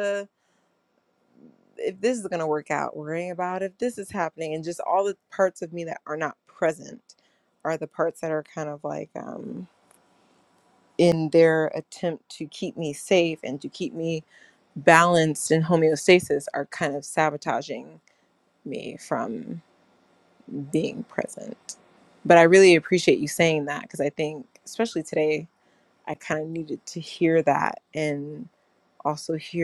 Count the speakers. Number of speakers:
one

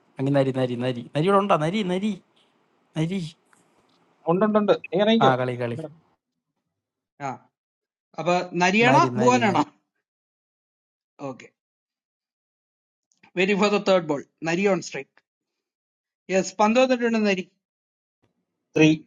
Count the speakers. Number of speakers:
three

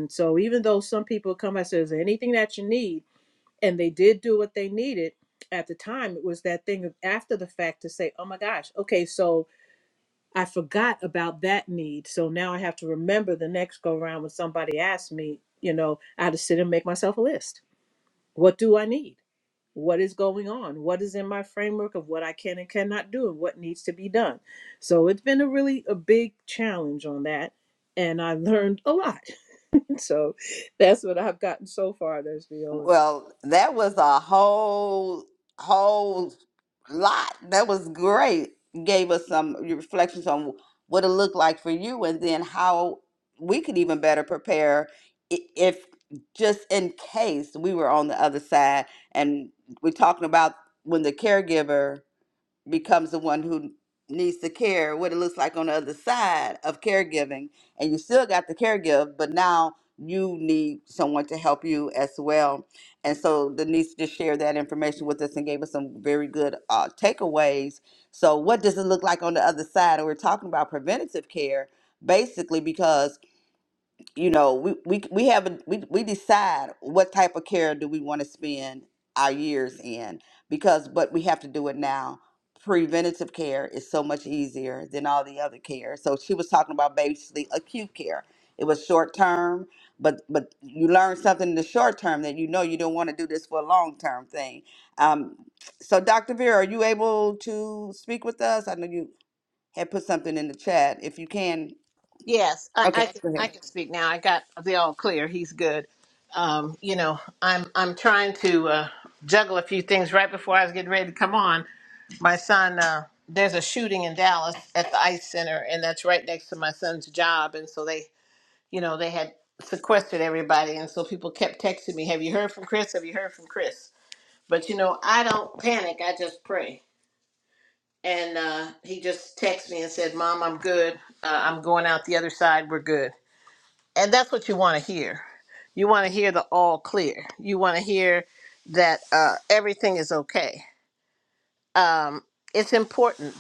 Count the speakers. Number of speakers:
three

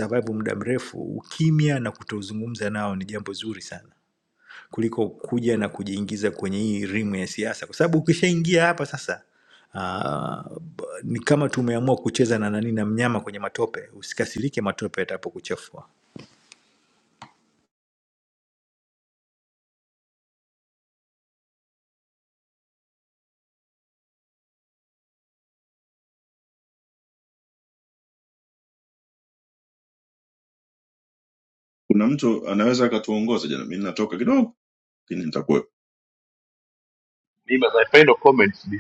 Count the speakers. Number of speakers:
three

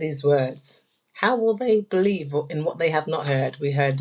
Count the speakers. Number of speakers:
one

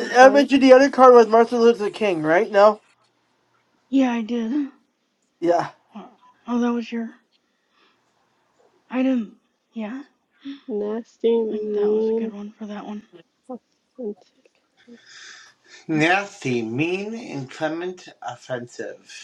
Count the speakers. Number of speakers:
four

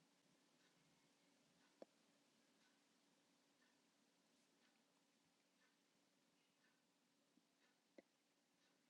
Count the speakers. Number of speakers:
zero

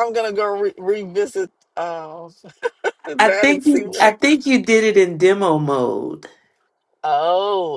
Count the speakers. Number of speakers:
two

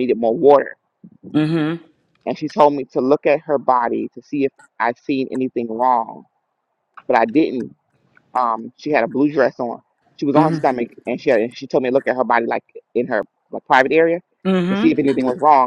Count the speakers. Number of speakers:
two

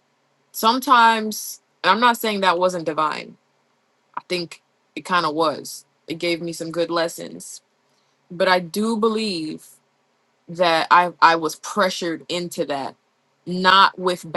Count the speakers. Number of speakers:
one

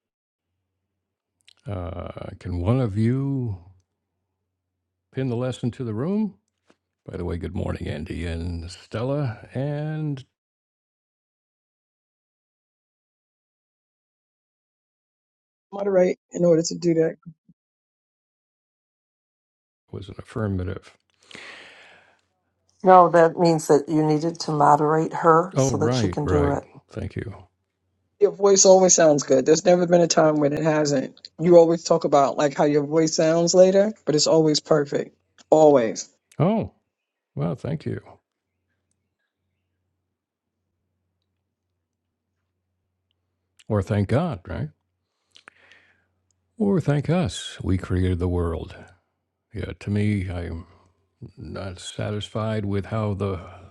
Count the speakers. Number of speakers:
three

